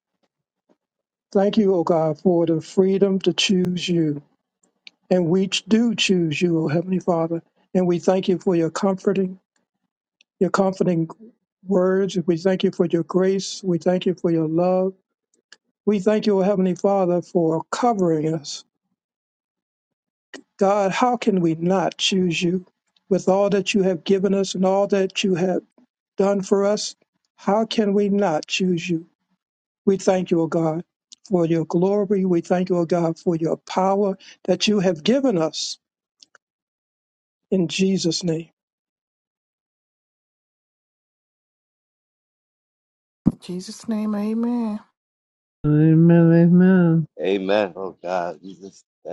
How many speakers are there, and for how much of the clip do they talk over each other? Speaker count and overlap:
four, no overlap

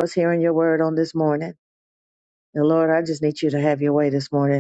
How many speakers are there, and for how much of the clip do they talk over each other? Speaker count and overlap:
one, no overlap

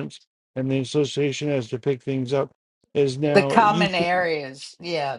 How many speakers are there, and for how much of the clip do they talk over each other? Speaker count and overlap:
two, about 11%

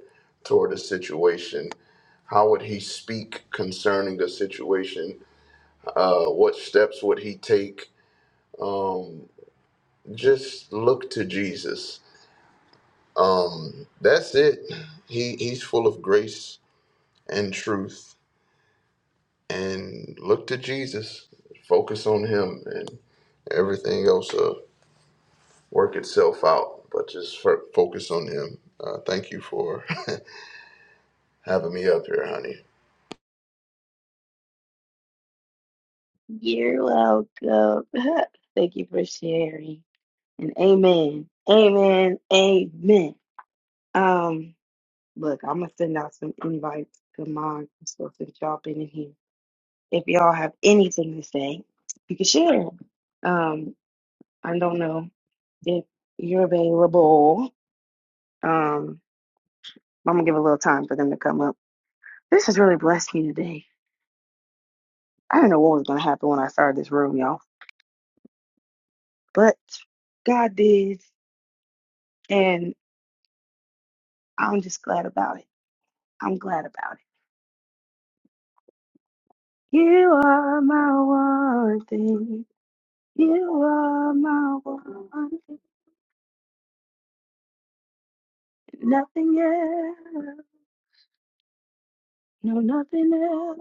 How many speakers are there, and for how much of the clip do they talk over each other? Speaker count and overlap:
two, no overlap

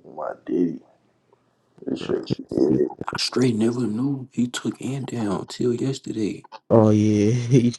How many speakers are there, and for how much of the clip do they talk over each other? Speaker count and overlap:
three, about 1%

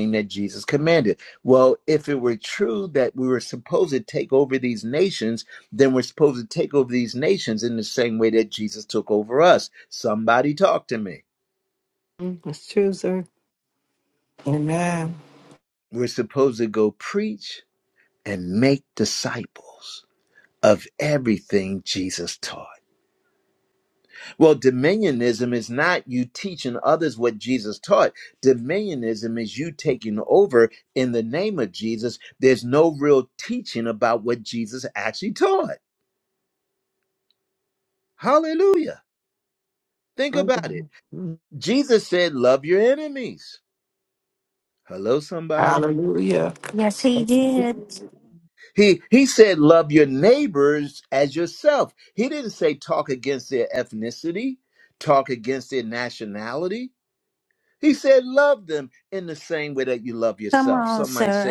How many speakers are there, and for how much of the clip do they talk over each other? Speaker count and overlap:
four, about 3%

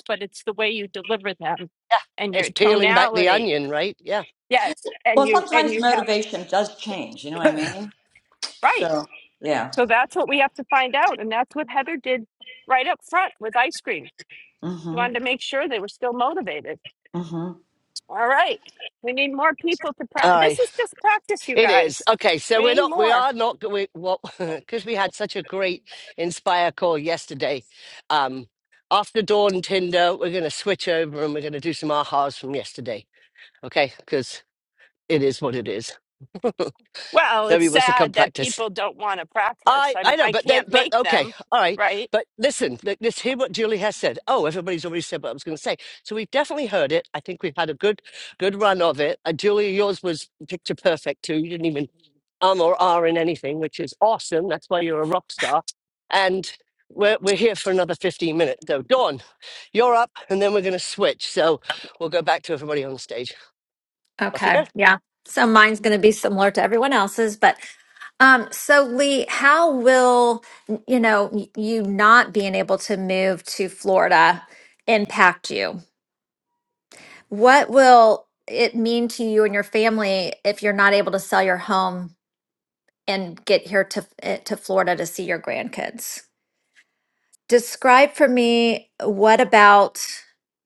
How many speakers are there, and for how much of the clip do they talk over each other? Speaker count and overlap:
four, about 8%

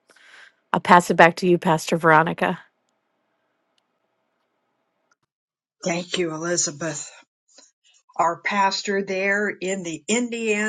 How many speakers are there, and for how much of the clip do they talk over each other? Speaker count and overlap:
two, no overlap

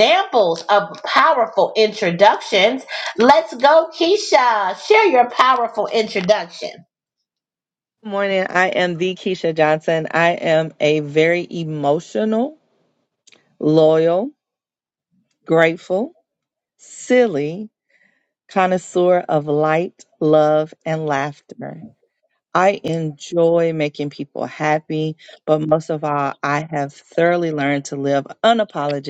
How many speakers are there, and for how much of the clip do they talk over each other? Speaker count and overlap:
two, no overlap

